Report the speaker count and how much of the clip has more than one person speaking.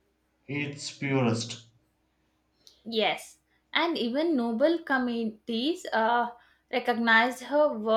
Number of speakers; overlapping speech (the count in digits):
2, no overlap